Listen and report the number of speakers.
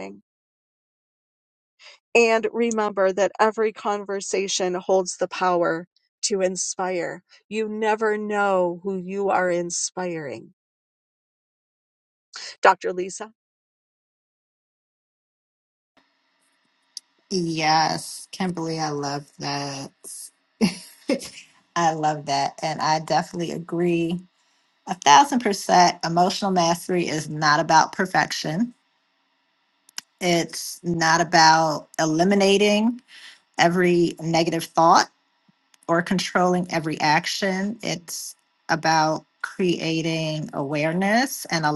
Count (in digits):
2